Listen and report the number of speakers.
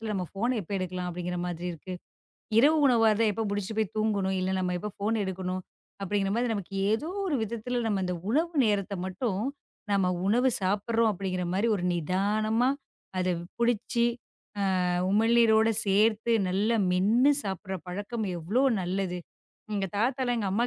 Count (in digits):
1